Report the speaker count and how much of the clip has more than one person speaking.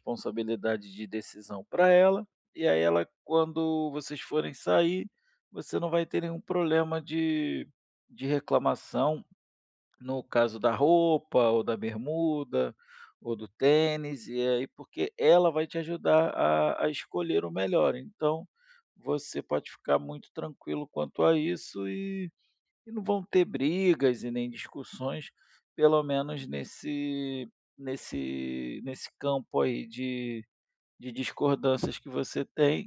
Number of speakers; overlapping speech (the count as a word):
one, no overlap